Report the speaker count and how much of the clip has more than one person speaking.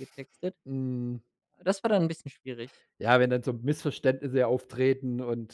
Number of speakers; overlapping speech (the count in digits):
2, no overlap